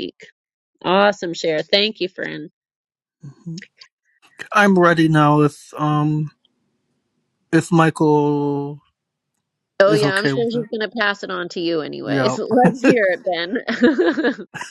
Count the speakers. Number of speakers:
two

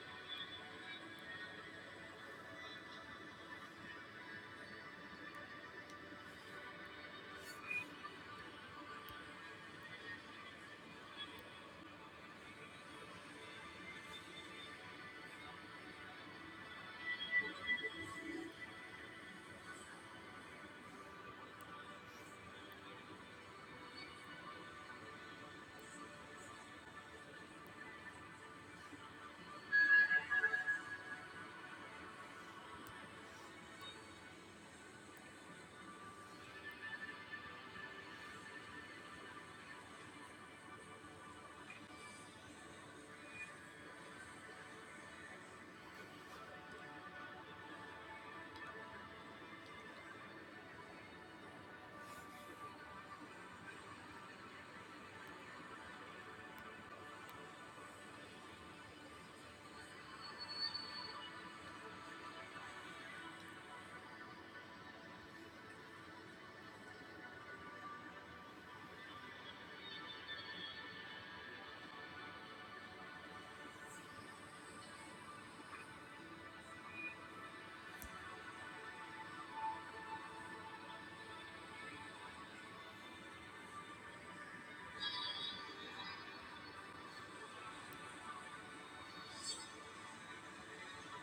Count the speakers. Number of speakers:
zero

